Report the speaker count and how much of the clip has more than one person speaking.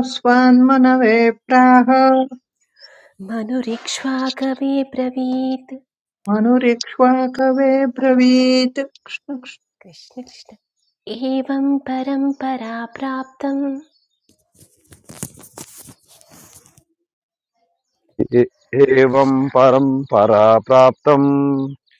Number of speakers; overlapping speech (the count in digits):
3, about 2%